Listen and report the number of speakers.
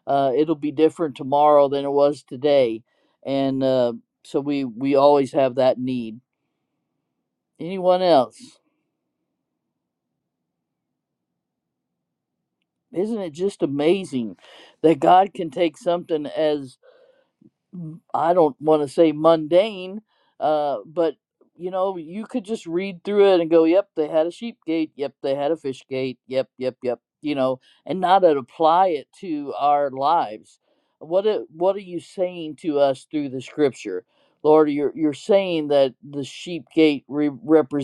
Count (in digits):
1